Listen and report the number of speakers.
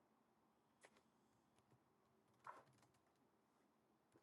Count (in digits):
0